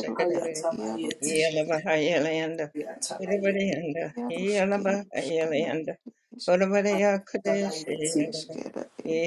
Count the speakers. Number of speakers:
three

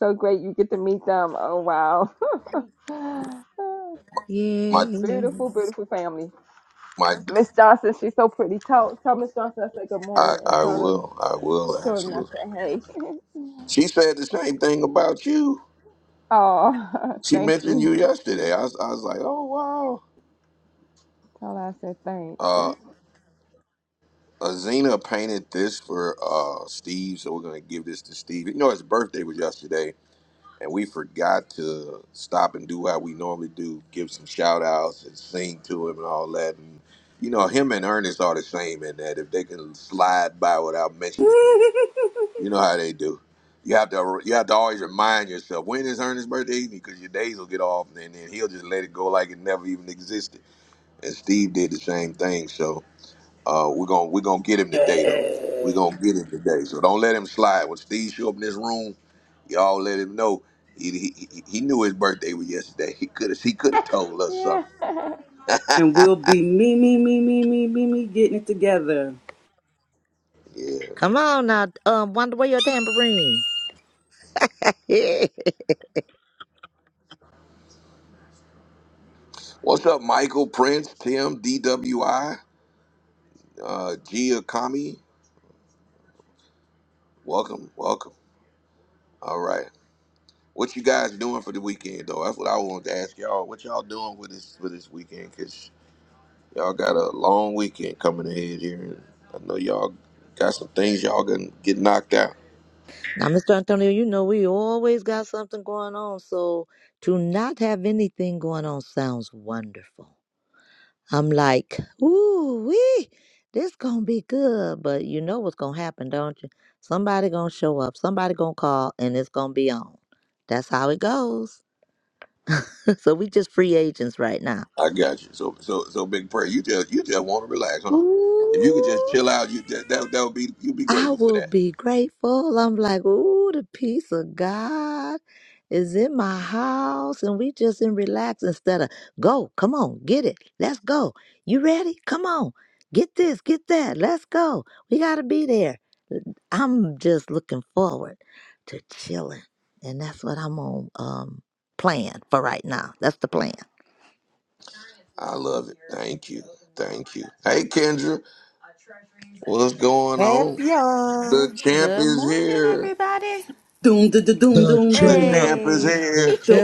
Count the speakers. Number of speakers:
six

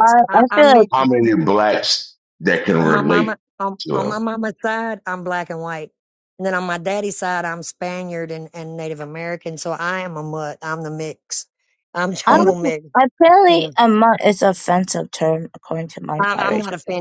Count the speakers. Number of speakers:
three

